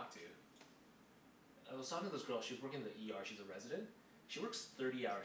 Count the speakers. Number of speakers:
1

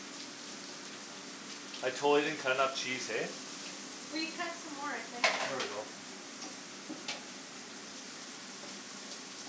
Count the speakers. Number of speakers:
2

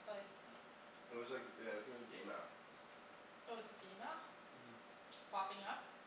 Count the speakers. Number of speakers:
2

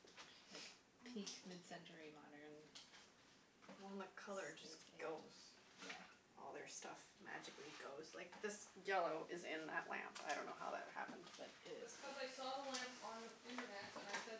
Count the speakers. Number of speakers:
3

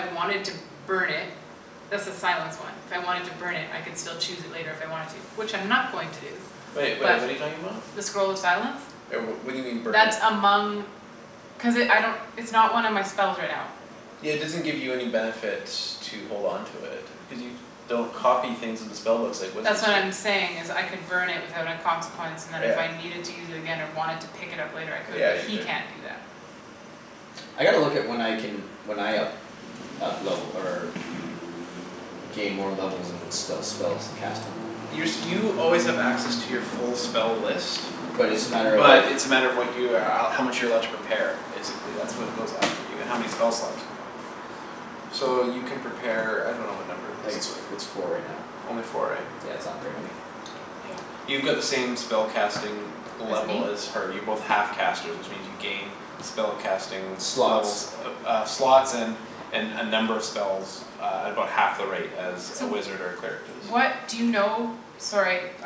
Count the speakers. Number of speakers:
3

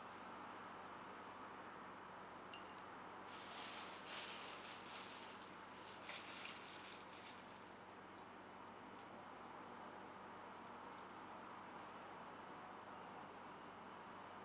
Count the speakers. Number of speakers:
0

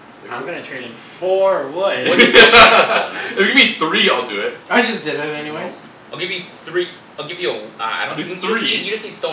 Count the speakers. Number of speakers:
4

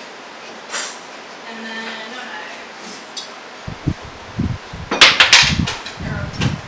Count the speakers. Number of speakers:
1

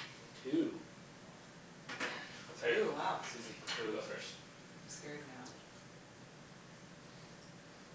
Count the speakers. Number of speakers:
2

